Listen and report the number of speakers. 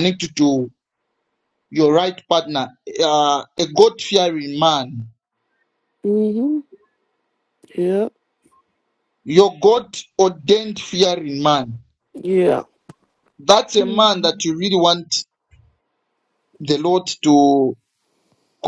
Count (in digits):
2